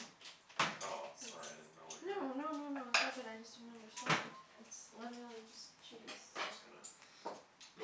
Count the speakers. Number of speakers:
two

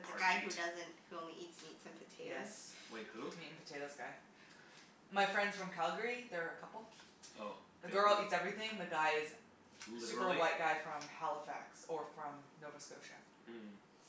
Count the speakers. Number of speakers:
three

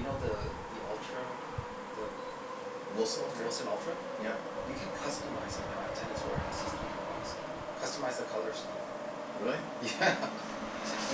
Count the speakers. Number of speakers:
two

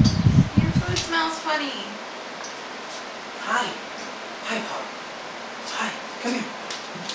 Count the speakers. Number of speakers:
two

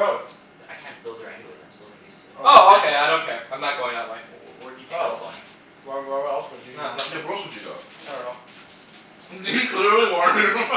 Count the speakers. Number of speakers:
four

